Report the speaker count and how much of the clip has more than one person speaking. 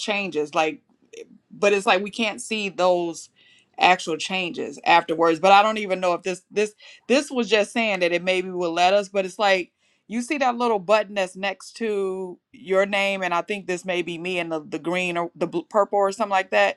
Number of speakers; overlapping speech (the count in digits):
1, no overlap